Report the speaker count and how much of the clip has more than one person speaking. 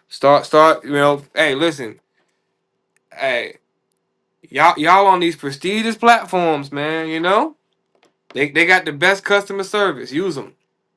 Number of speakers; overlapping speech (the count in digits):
1, no overlap